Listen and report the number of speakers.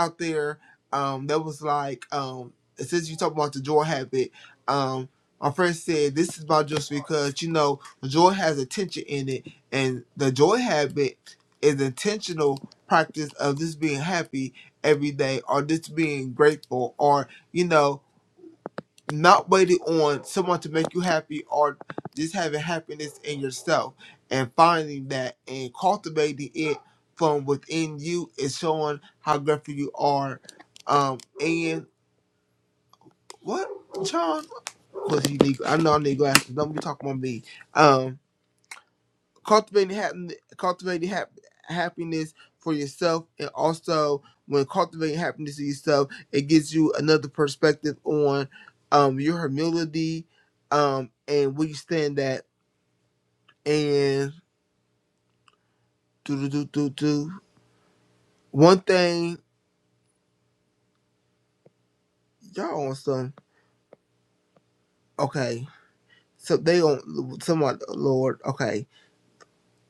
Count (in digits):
1